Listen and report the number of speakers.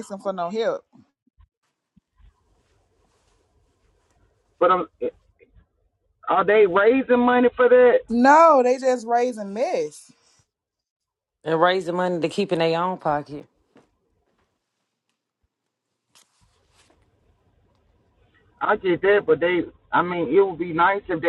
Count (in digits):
3